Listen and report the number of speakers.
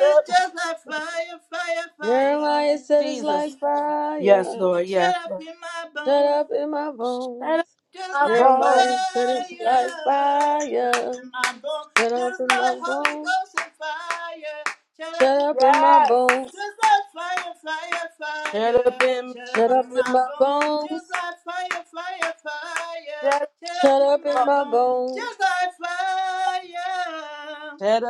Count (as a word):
three